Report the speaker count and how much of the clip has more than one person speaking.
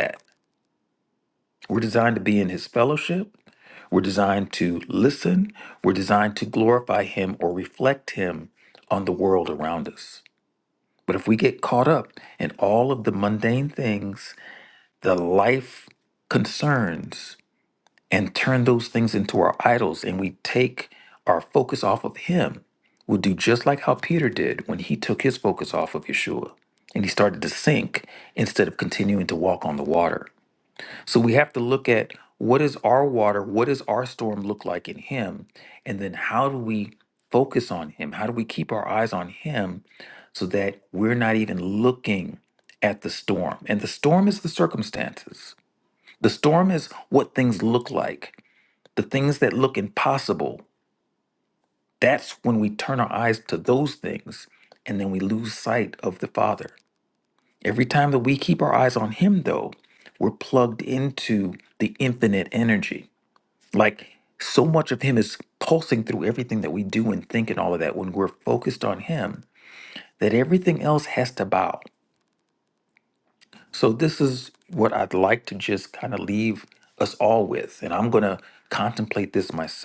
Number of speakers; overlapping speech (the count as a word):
one, no overlap